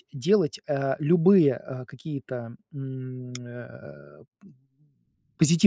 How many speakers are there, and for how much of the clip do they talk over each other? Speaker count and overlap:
1, no overlap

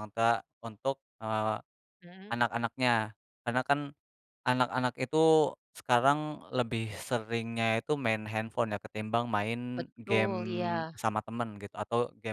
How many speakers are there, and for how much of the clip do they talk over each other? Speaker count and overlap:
2, about 5%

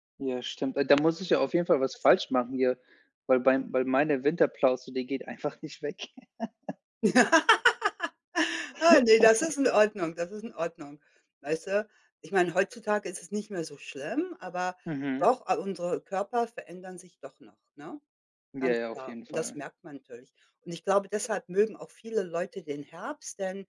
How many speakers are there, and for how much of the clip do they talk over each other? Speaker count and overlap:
2, about 5%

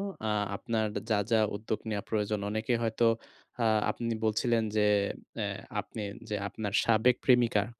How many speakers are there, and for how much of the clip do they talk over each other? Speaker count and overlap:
1, no overlap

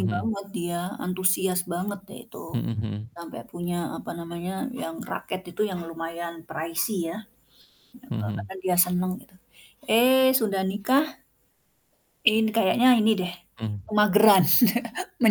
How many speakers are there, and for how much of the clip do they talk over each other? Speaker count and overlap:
2, about 4%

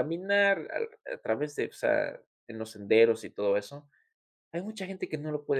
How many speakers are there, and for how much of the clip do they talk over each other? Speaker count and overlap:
1, no overlap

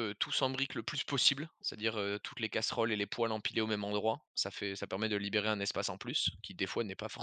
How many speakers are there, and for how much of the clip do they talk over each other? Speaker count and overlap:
1, no overlap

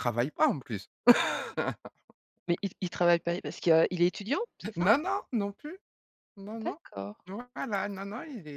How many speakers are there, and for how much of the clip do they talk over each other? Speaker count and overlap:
2, about 4%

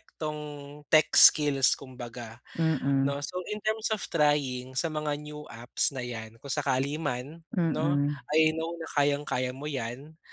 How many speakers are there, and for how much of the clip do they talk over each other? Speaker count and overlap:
2, about 5%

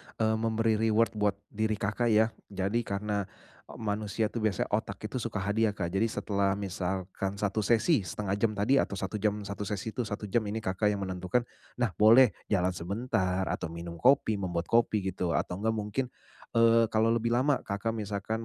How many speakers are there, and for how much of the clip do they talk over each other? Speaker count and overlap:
1, no overlap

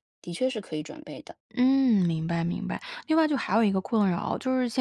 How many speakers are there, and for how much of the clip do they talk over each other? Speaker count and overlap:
2, no overlap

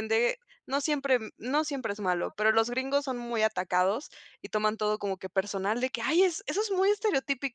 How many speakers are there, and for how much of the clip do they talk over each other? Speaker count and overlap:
1, no overlap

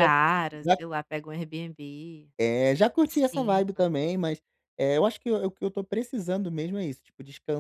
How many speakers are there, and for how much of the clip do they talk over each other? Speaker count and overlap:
2, about 18%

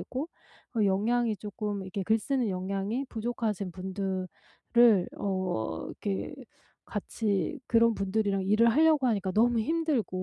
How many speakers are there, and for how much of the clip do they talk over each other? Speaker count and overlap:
1, no overlap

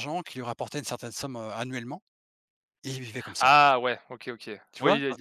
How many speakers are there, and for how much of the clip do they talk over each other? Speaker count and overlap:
2, about 10%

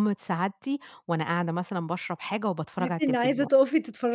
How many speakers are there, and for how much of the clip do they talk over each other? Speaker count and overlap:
2, about 17%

